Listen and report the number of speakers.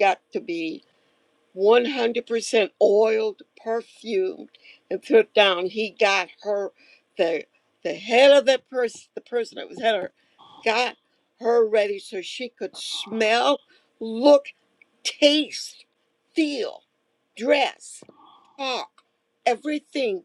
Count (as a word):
one